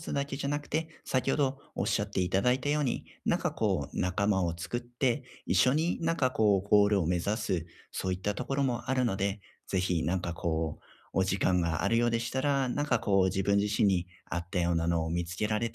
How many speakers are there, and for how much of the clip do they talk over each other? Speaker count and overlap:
1, no overlap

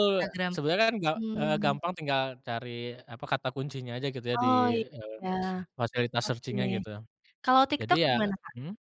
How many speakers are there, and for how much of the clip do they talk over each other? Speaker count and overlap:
2, about 24%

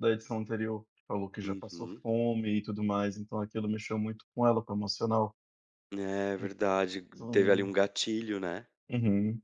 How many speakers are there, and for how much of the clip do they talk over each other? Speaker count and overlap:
2, about 10%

